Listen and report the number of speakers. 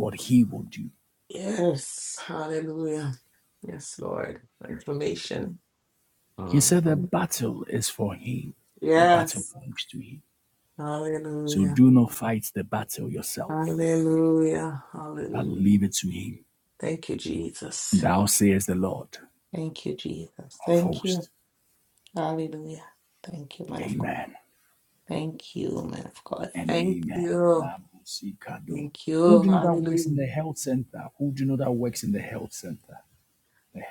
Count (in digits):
2